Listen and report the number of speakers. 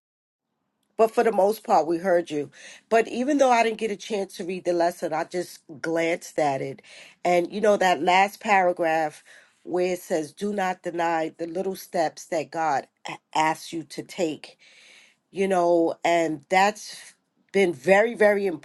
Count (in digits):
1